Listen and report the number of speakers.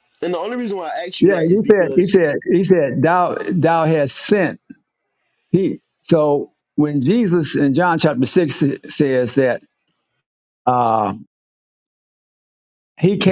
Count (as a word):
two